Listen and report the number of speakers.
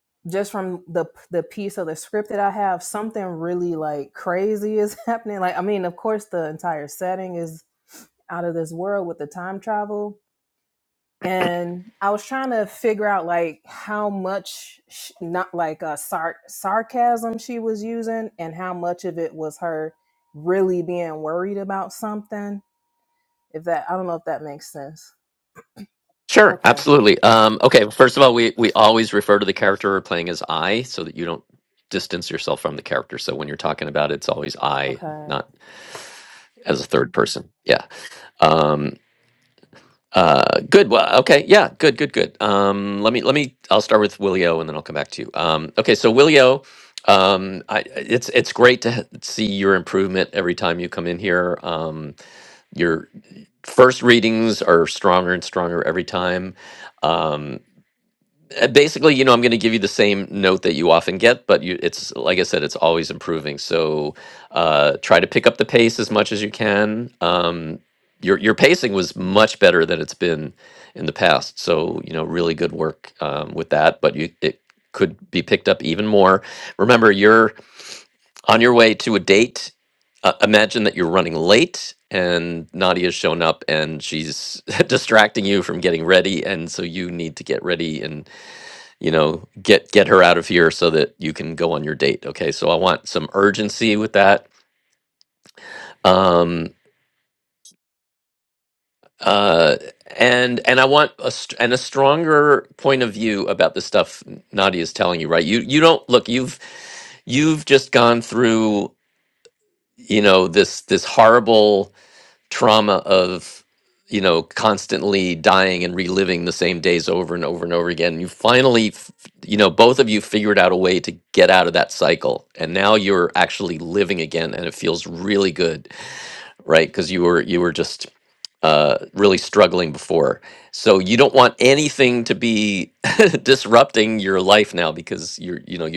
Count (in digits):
2